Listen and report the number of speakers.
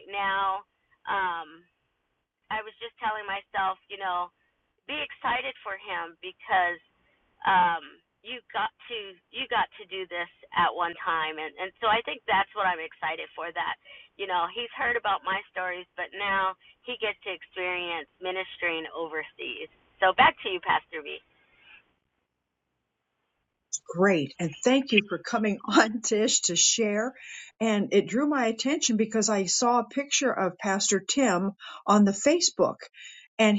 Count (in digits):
2